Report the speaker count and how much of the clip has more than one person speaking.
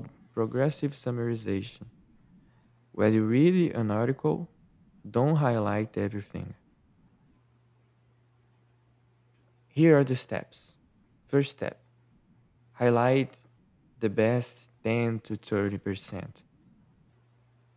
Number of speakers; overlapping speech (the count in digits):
1, no overlap